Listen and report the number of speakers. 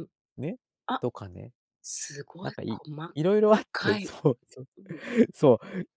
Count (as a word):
two